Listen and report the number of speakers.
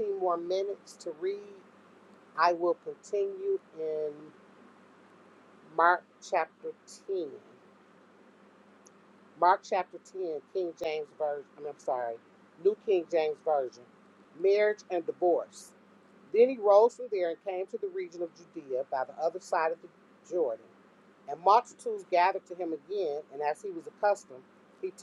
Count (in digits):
1